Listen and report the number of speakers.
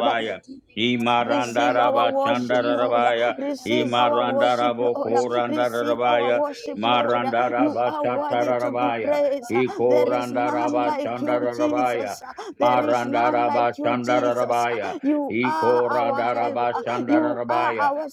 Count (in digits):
2